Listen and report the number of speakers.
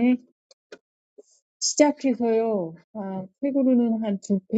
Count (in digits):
1